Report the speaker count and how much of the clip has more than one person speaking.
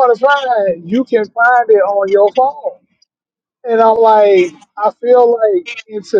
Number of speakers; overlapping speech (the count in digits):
1, no overlap